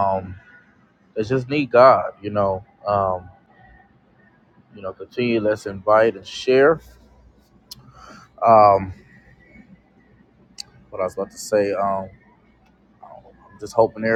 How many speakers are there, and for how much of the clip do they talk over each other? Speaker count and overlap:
one, no overlap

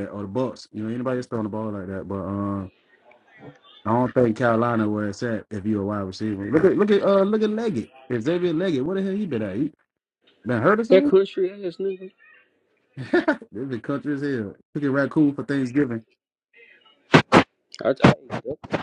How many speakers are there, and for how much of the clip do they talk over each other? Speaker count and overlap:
two, about 1%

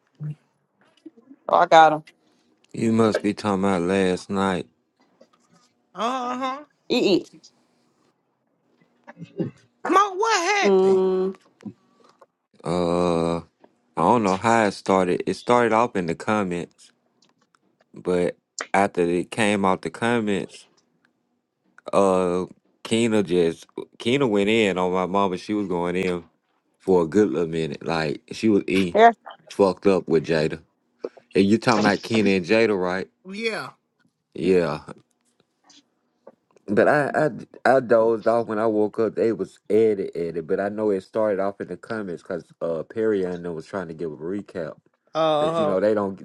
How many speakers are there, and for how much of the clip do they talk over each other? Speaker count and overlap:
three, about 2%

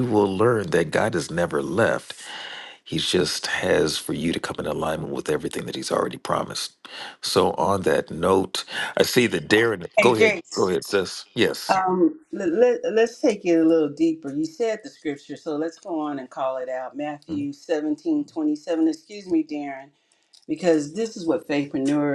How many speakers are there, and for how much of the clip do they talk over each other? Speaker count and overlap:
two, about 4%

